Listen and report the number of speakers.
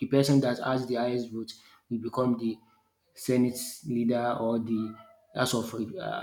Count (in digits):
1